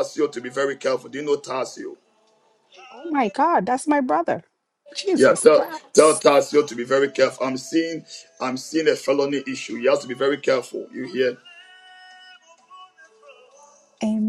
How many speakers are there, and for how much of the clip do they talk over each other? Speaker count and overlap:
two, about 4%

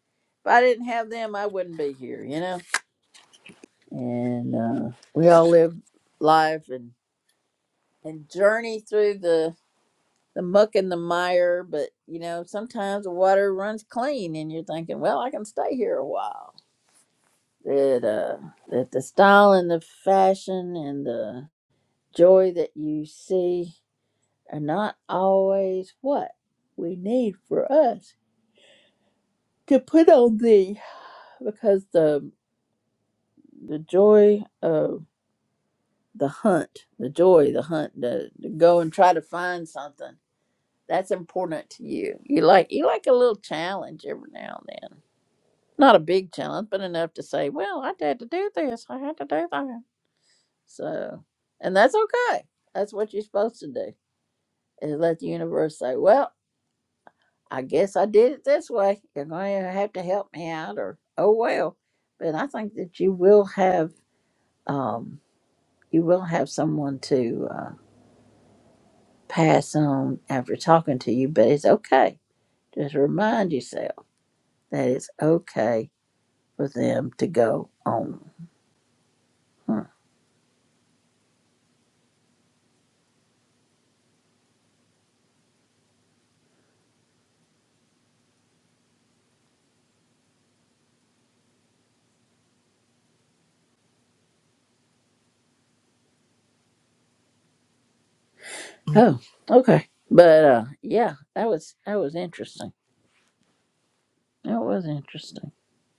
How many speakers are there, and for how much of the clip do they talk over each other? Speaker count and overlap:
one, no overlap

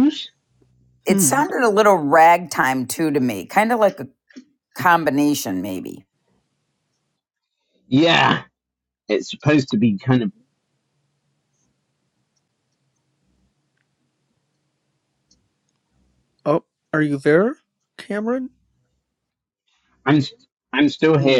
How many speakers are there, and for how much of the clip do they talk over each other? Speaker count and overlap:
three, about 3%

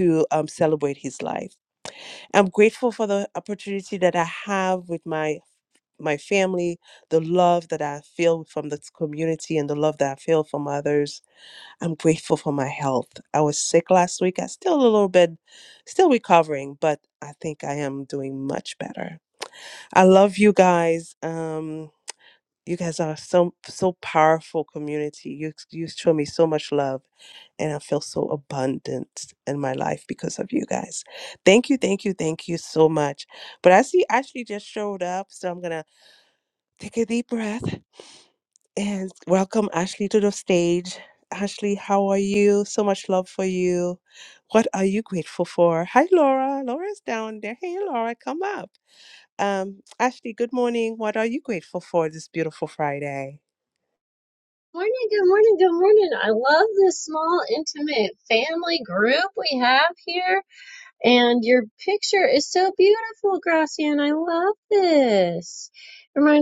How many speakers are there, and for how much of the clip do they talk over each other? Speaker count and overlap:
two, no overlap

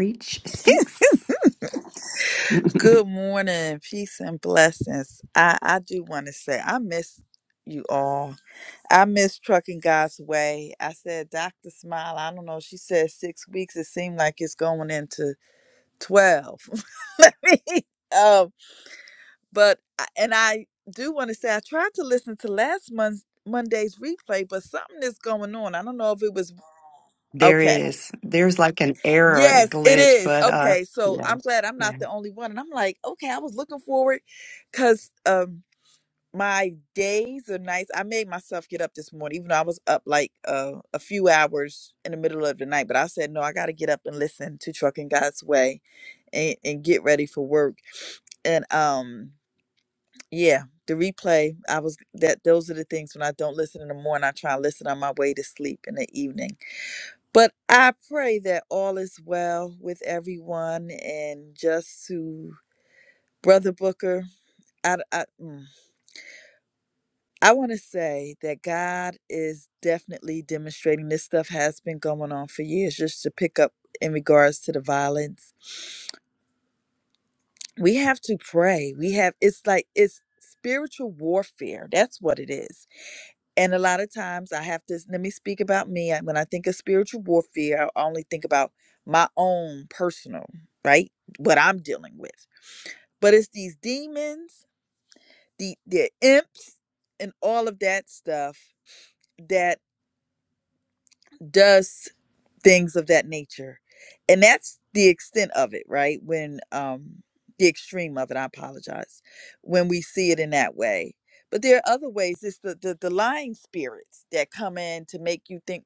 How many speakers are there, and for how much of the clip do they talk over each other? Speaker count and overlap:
two, about 2%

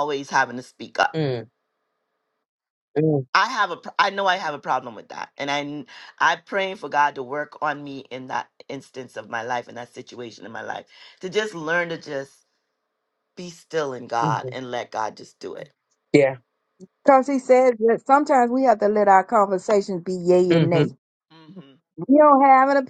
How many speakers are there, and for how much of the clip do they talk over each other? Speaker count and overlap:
three, about 2%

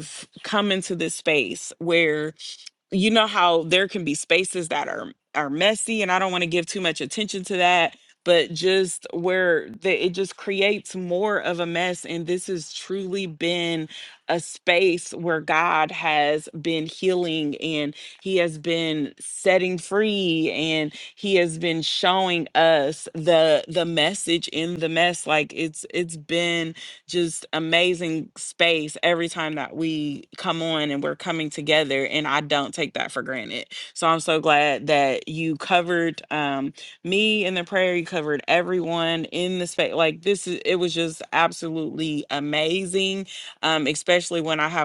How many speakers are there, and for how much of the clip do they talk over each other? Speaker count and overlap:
one, no overlap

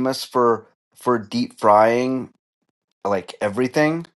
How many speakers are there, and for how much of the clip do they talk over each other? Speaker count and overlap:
one, no overlap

